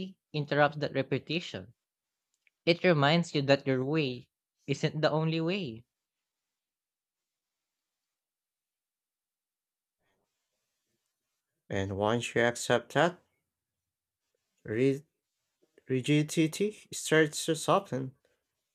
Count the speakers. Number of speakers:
2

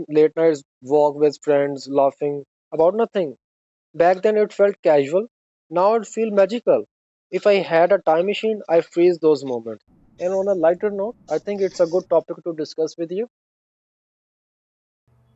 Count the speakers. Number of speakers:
1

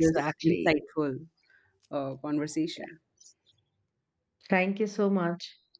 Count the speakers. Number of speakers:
2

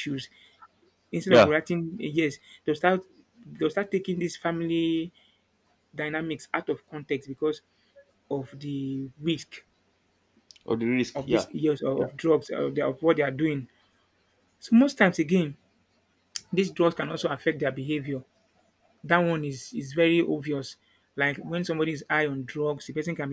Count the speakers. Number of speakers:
2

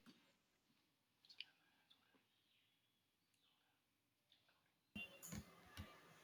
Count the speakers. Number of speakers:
0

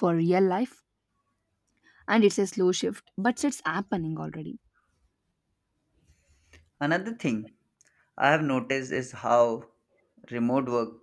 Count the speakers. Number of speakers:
2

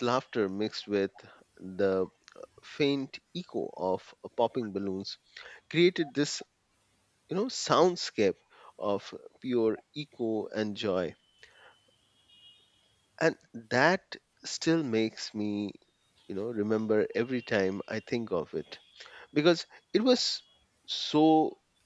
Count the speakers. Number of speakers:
1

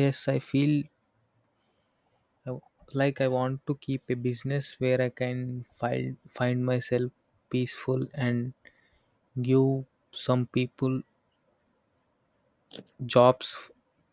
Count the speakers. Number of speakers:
1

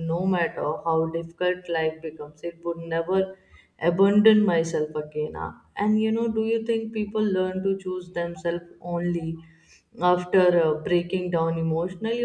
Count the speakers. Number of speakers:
1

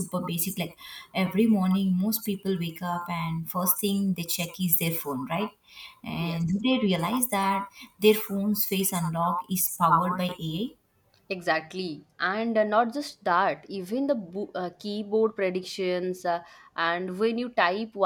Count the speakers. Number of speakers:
2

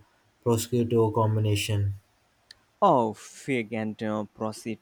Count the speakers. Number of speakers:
2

